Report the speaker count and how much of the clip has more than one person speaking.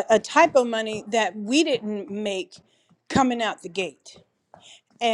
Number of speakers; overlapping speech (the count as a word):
one, no overlap